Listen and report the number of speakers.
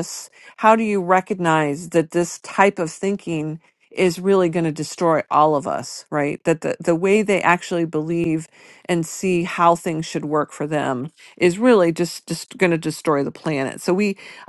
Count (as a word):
one